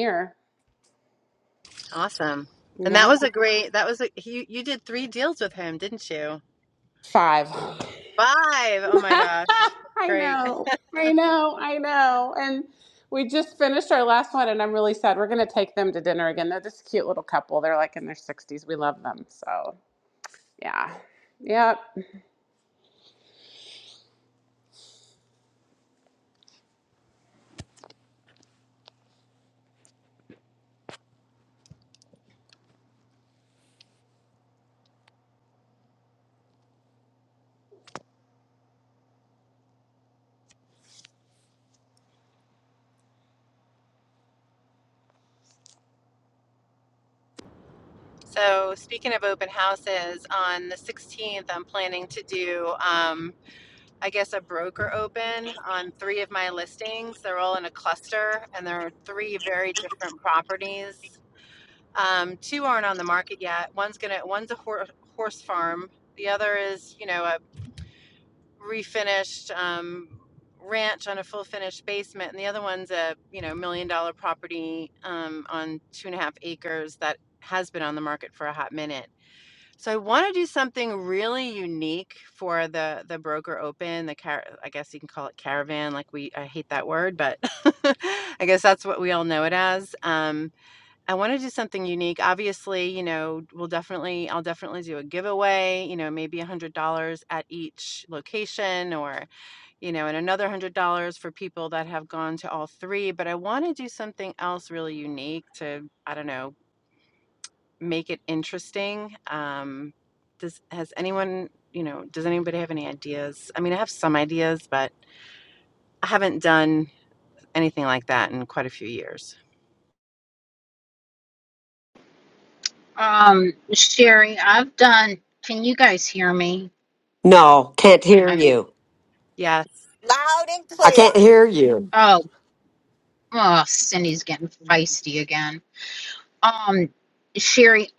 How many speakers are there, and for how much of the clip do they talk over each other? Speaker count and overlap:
5, about 1%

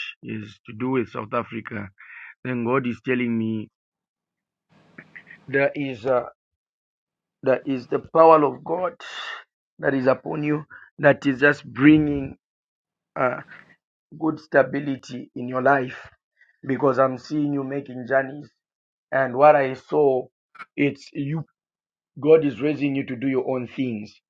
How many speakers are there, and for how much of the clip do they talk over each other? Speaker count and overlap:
1, no overlap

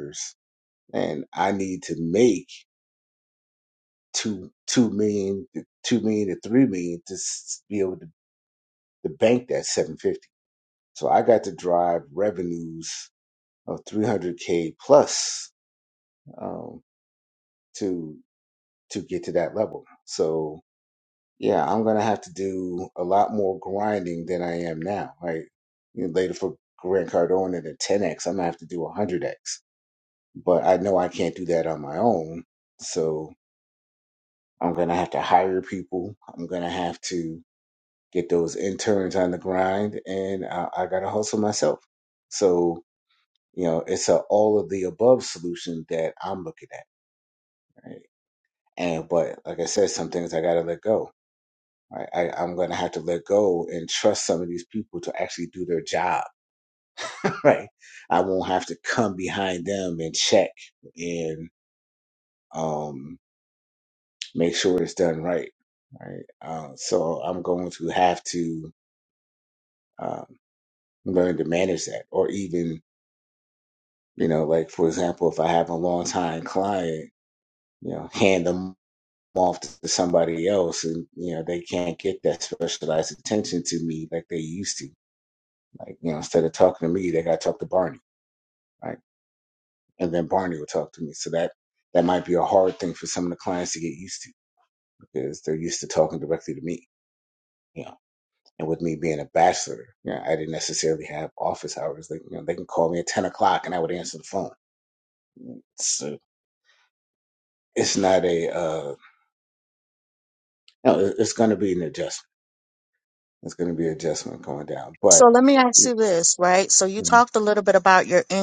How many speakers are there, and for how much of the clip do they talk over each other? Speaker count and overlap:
2, under 1%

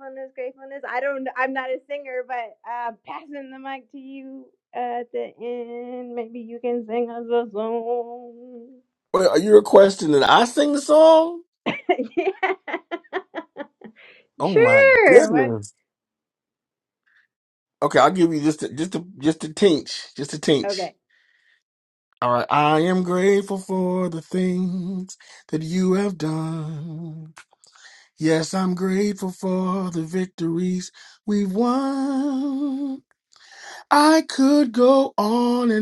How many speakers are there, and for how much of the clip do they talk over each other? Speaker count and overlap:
2, about 4%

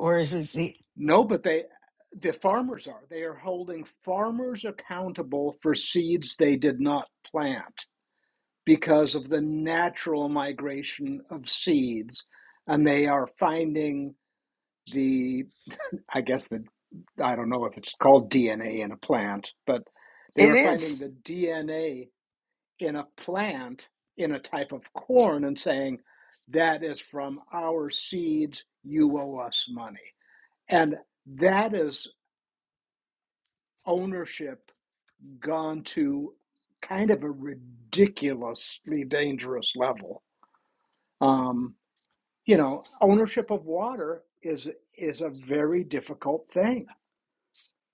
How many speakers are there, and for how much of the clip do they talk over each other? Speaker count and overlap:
2, about 1%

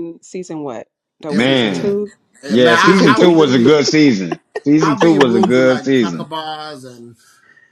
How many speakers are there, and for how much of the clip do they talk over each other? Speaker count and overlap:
3, about 46%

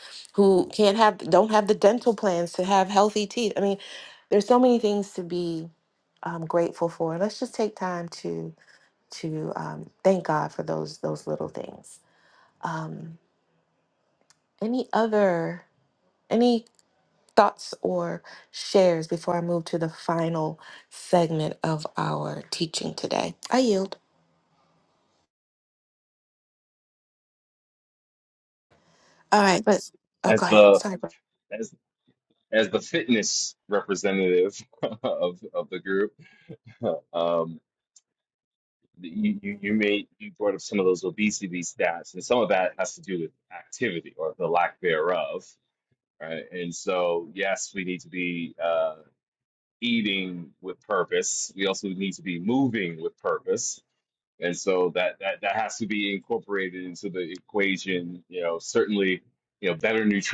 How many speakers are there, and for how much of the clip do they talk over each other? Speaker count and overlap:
2, about 1%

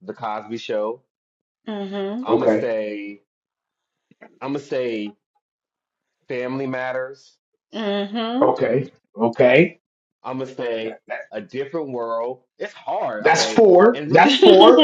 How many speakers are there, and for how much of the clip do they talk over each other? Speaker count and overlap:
3, about 12%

